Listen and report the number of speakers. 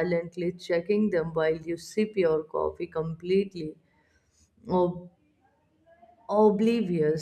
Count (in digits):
1